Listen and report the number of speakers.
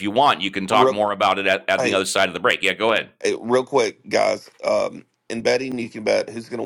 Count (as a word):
two